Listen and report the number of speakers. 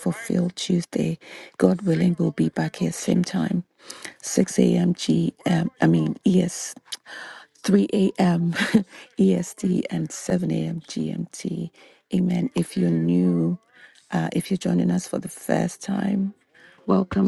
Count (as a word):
one